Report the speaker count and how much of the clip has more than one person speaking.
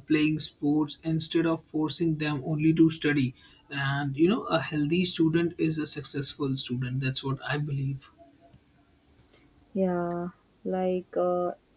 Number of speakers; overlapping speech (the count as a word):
two, no overlap